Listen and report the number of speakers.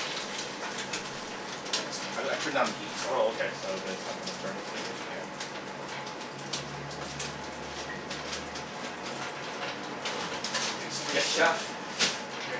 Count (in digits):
2